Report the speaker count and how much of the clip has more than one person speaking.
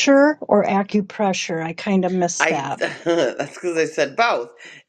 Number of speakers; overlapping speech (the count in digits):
2, about 8%